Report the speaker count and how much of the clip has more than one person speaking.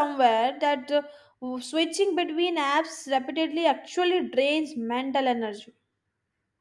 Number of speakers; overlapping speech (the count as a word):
one, no overlap